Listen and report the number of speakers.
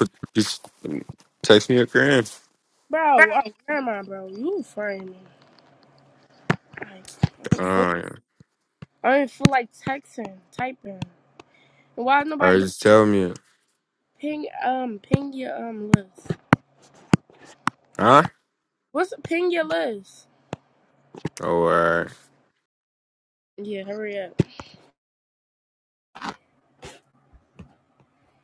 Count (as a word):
two